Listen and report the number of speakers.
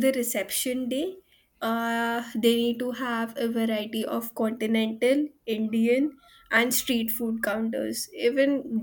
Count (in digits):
1